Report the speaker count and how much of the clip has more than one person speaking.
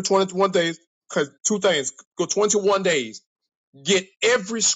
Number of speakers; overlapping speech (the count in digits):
1, no overlap